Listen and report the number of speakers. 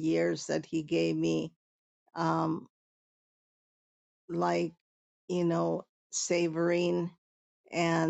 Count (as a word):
one